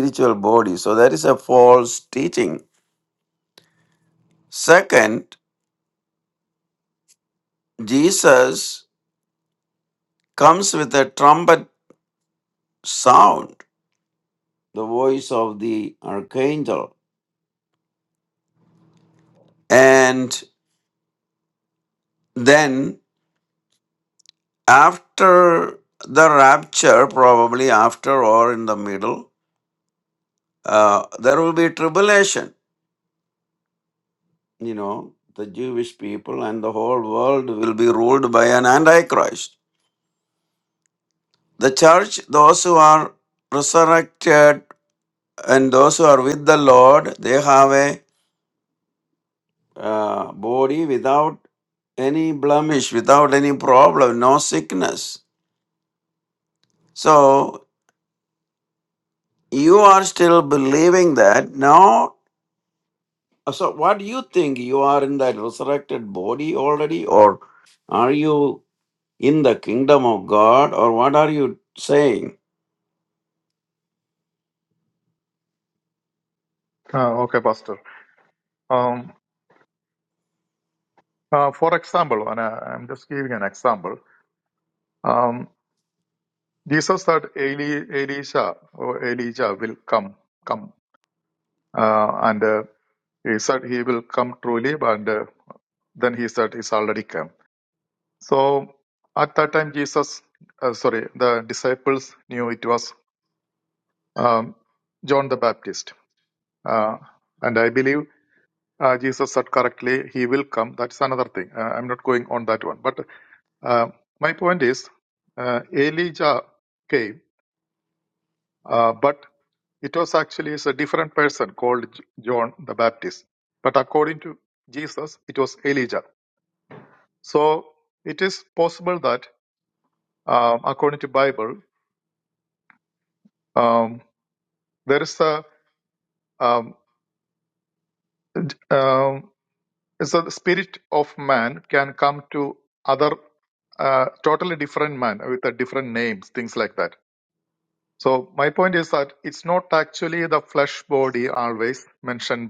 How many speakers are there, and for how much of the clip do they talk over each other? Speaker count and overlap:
2, no overlap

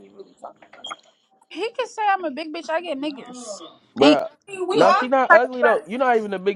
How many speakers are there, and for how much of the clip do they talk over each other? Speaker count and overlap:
3, about 14%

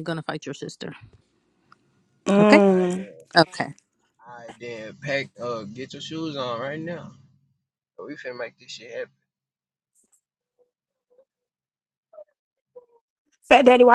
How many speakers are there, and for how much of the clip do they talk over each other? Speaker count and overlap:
3, about 4%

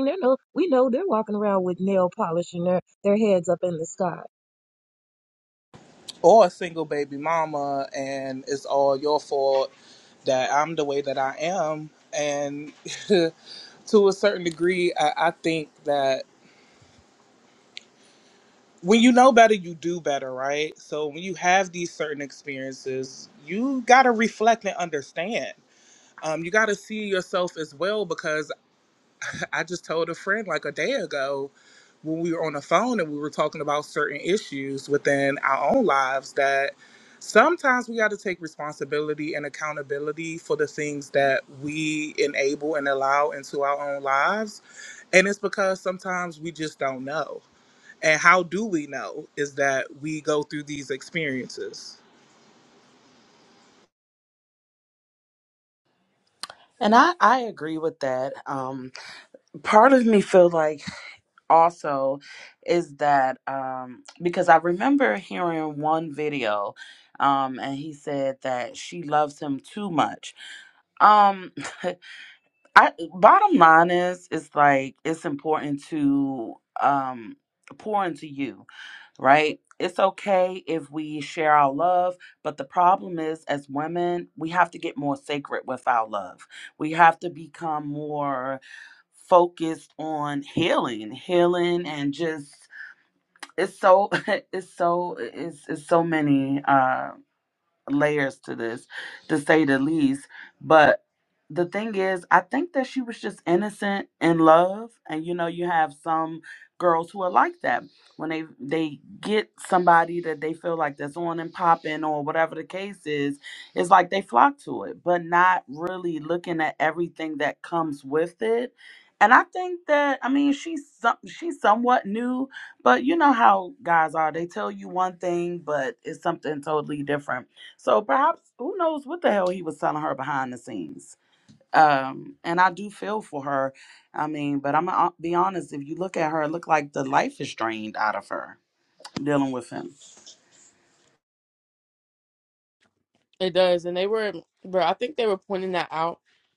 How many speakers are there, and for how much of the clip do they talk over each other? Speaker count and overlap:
4, no overlap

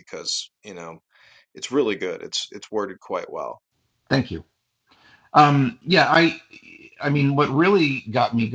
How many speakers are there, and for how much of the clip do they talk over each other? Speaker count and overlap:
2, no overlap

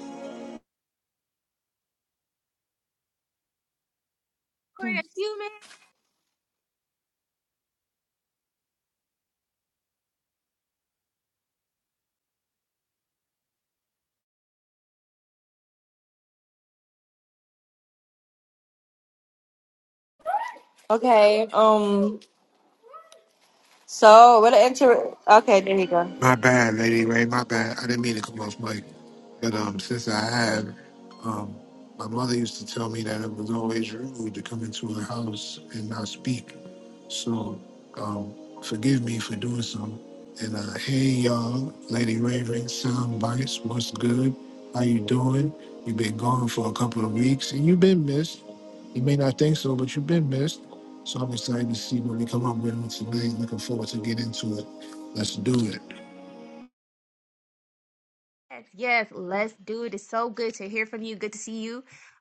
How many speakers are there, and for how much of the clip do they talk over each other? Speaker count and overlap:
3, no overlap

